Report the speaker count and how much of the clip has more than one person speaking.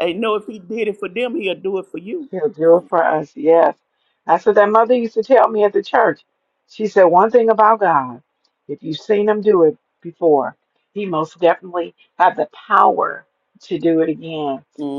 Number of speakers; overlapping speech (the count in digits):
2, no overlap